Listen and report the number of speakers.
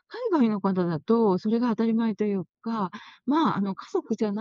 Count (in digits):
1